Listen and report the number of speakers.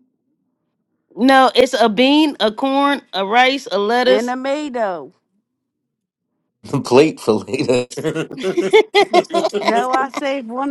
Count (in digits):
3